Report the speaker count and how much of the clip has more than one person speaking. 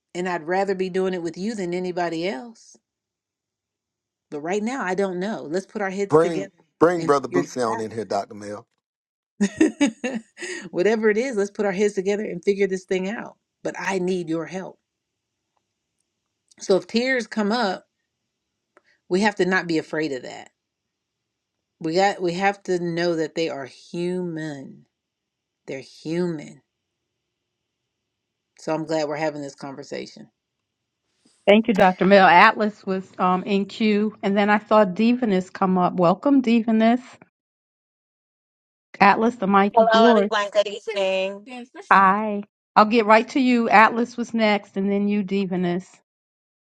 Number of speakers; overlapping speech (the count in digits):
4, about 2%